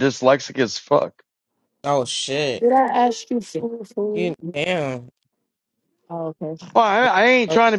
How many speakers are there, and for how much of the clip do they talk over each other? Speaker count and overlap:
three, about 4%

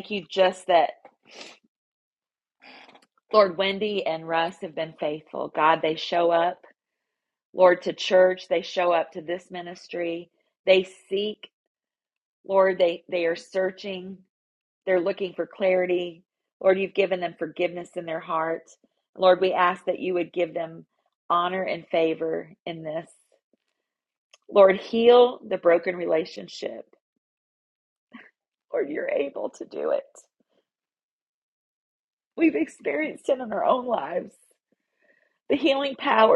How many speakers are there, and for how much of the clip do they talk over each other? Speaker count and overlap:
one, no overlap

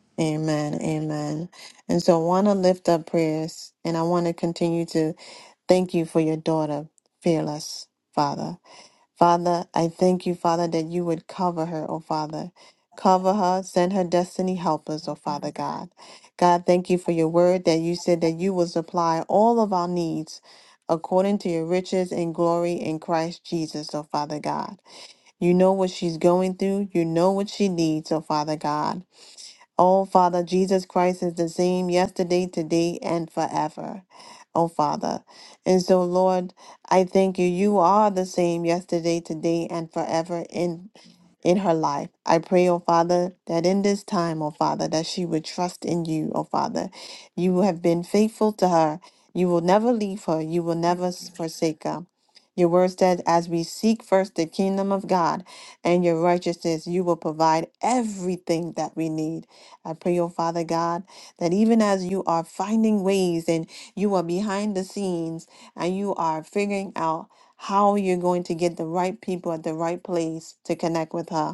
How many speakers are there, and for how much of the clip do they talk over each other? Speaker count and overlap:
one, no overlap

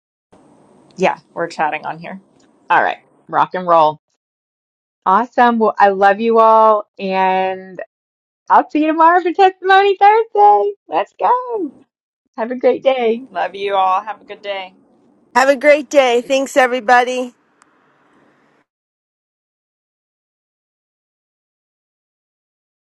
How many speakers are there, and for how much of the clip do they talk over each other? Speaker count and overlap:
three, no overlap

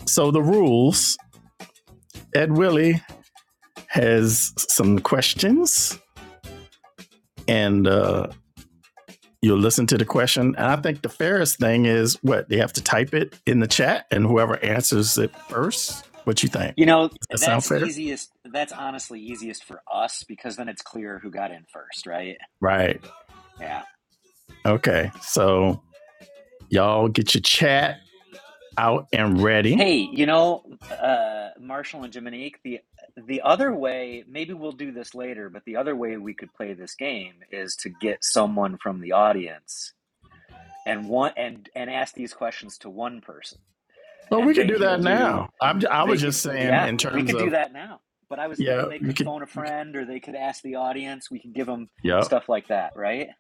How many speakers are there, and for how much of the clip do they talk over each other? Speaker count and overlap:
two, about 8%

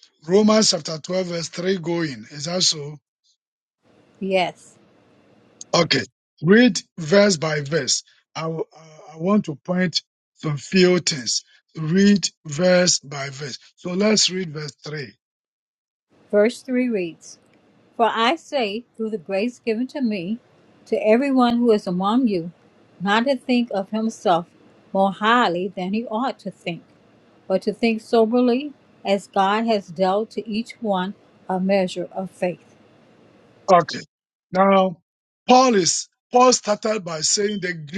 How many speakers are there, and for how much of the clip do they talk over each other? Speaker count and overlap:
two, no overlap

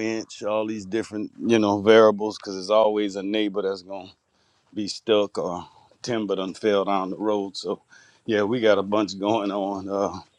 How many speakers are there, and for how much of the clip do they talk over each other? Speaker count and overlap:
one, no overlap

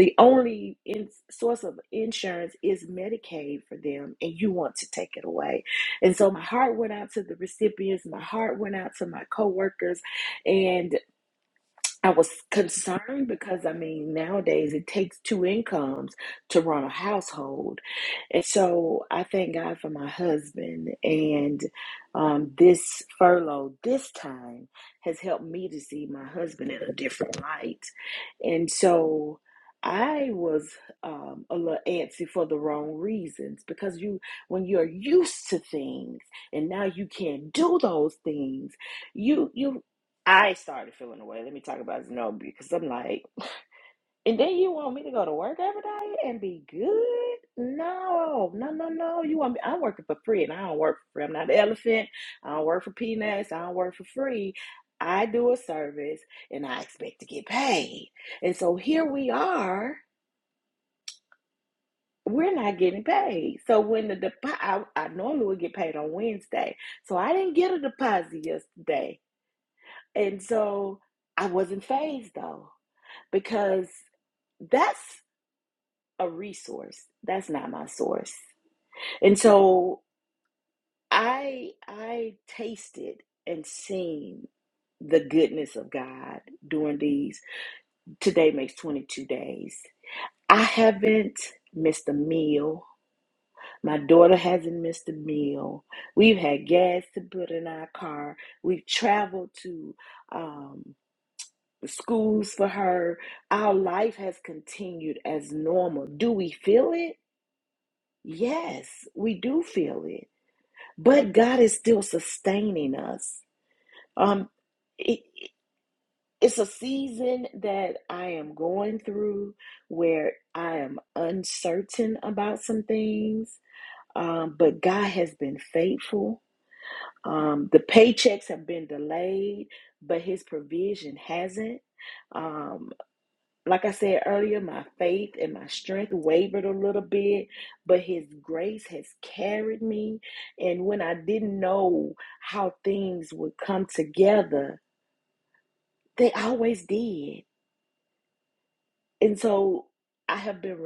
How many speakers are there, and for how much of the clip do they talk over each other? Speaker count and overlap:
one, no overlap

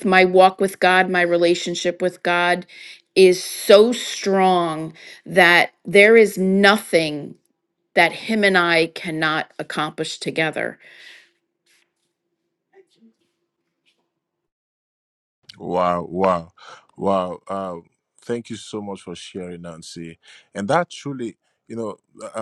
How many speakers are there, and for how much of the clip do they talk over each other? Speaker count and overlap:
two, no overlap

